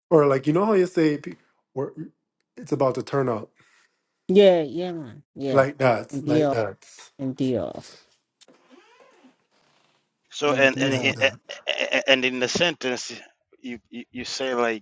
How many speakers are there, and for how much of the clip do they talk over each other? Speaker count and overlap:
3, about 10%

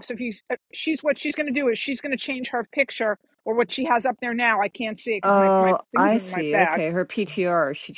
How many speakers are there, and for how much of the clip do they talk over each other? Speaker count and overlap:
2, about 21%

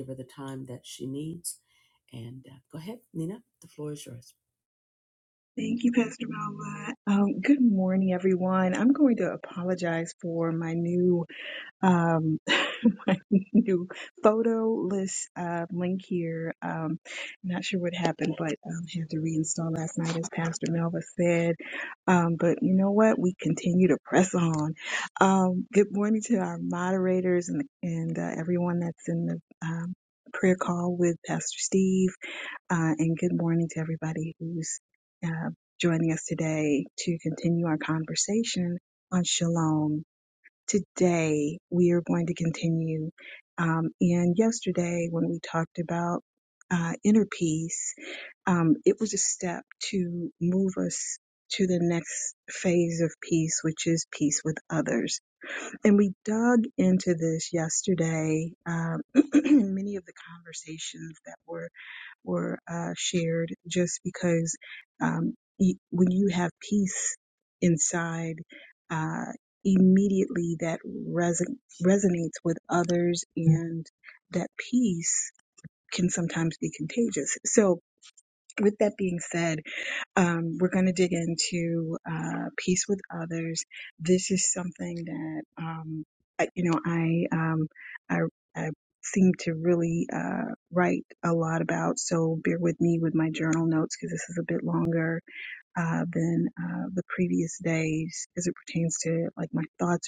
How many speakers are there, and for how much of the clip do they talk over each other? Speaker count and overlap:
2, no overlap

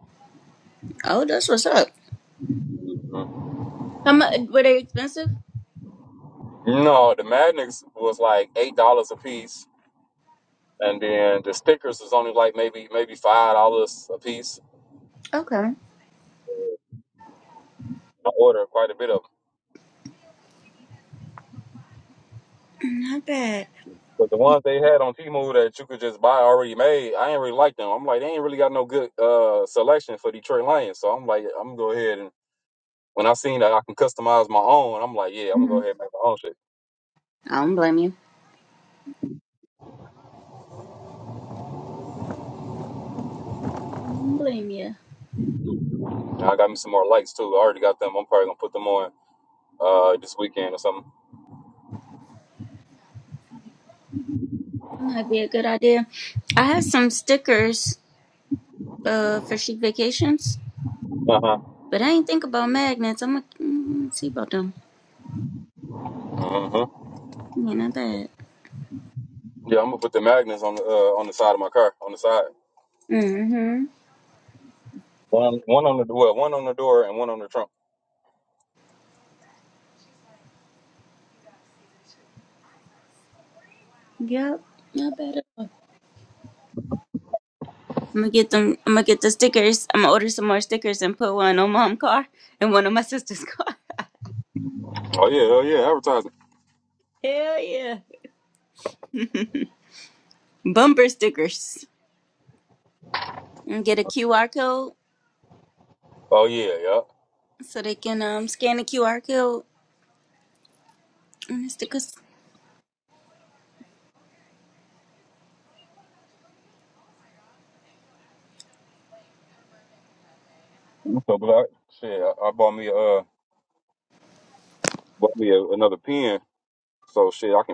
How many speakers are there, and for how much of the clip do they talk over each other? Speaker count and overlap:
2, under 1%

